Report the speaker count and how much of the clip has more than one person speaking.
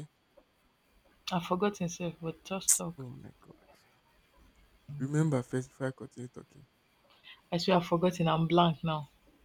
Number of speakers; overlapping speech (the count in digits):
2, no overlap